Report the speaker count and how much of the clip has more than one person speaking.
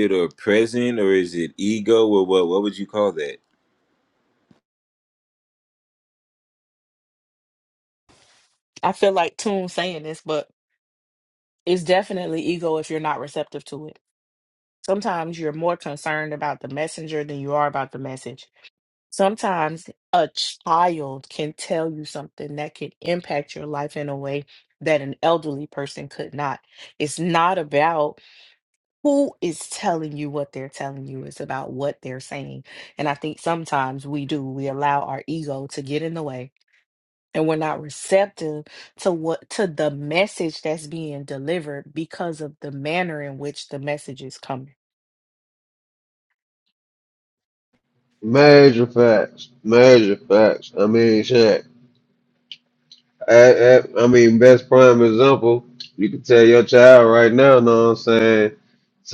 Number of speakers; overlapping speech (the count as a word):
three, no overlap